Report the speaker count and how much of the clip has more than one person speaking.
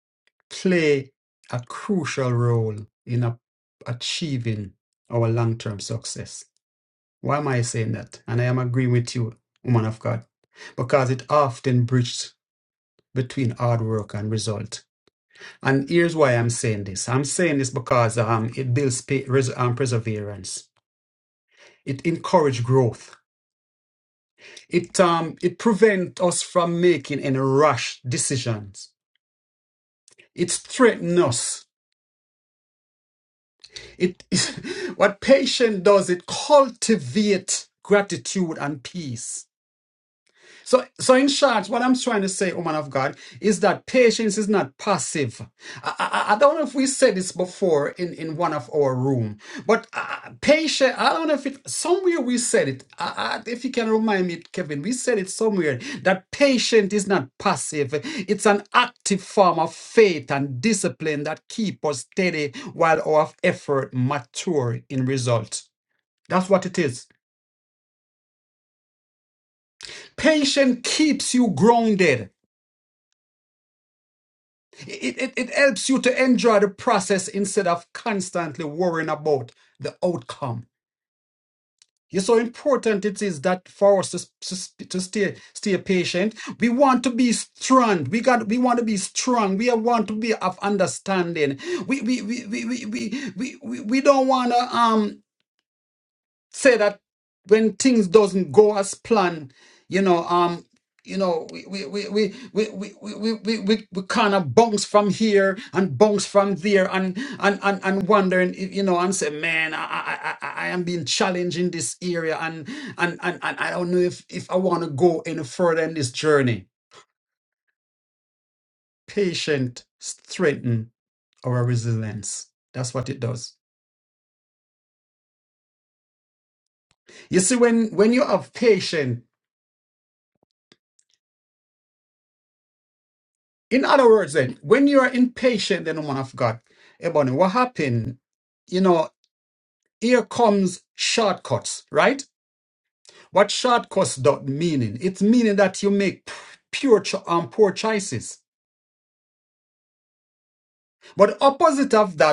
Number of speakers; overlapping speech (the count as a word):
one, no overlap